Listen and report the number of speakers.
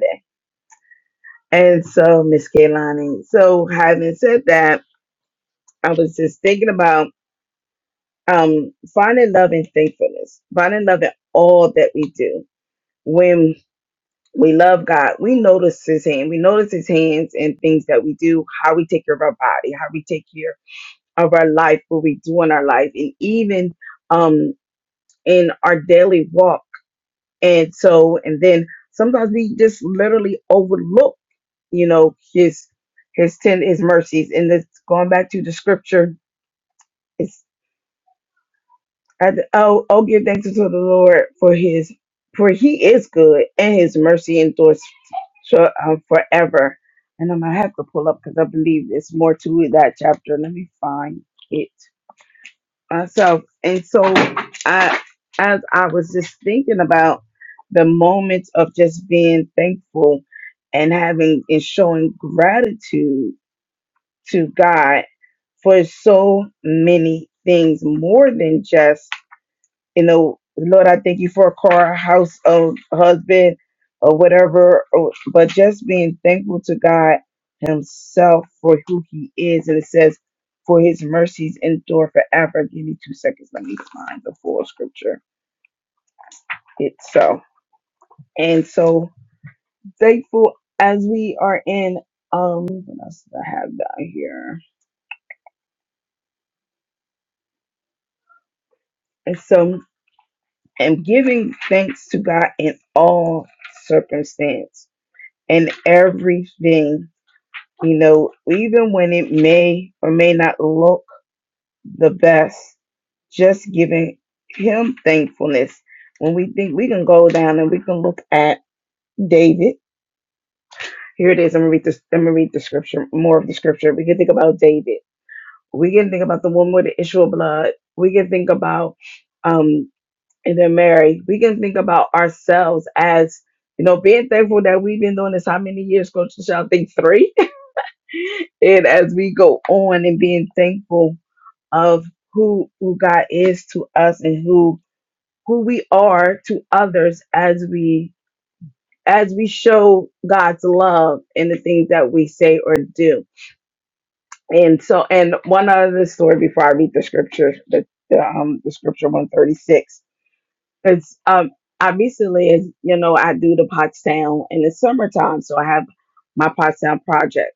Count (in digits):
1